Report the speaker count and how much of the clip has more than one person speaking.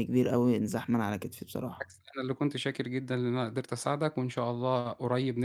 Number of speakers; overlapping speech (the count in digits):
2, under 1%